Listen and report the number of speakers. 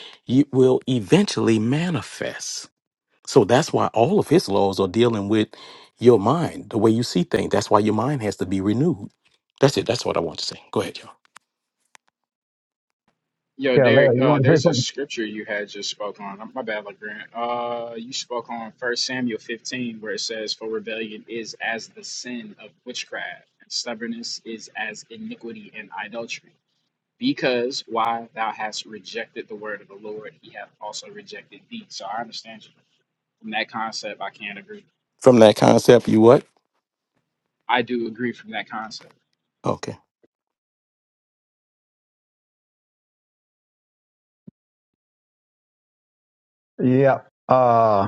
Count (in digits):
3